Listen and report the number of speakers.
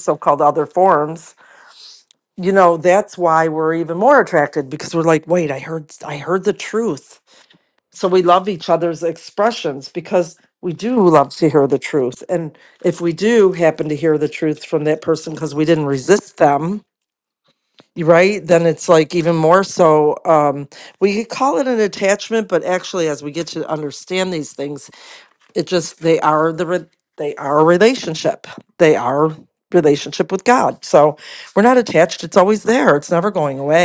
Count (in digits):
1